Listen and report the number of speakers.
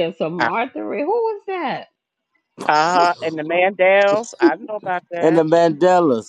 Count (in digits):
3